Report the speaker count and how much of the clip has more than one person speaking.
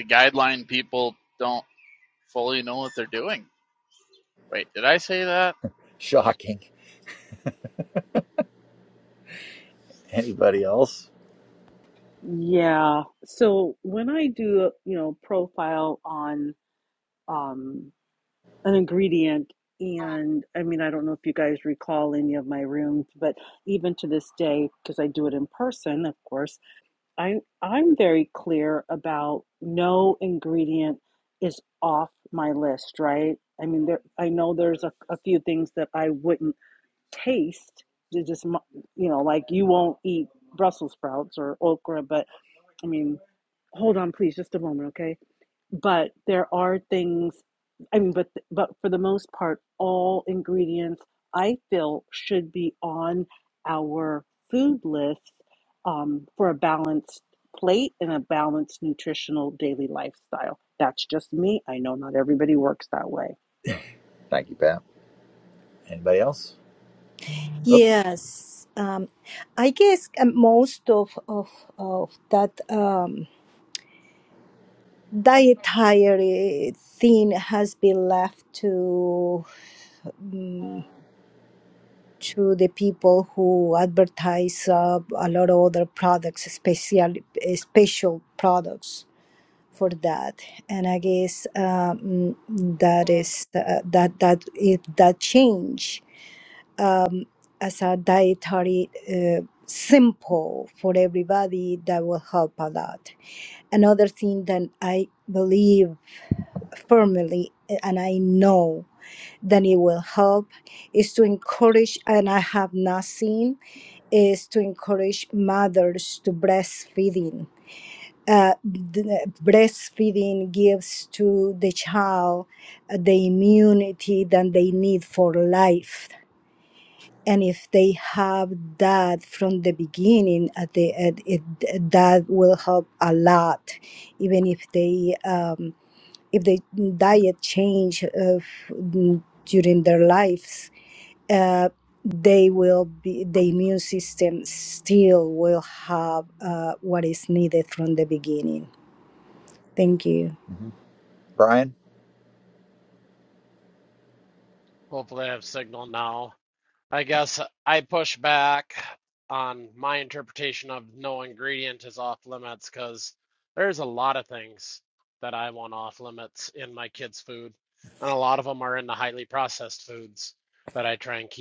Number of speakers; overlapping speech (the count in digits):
5, under 1%